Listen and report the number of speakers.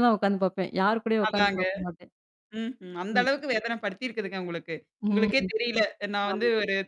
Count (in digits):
2